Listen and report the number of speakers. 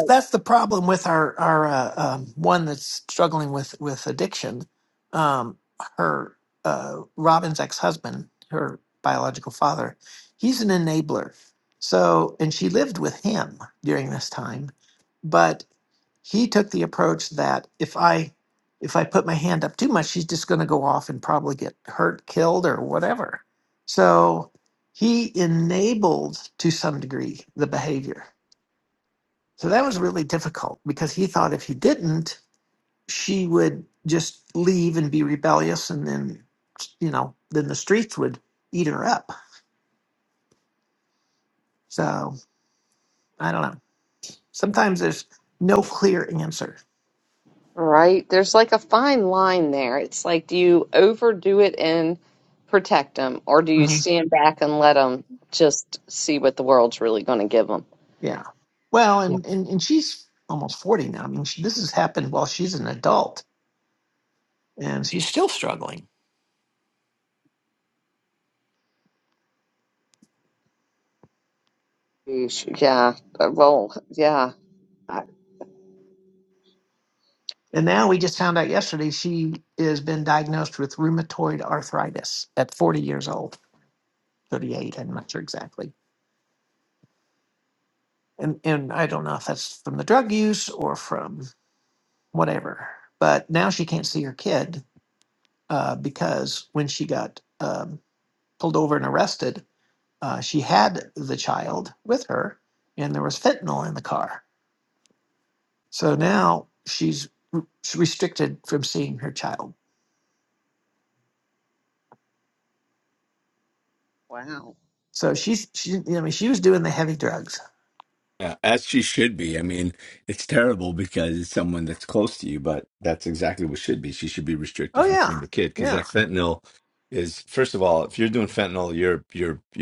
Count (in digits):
3